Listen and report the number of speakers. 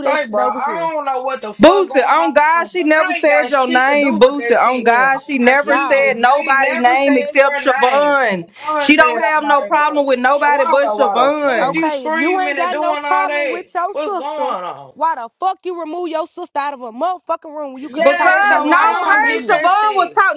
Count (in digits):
3